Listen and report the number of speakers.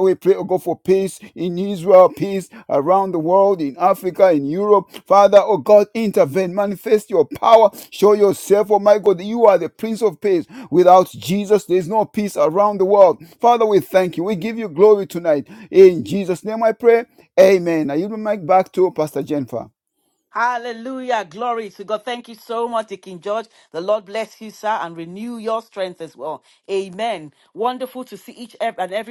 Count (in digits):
2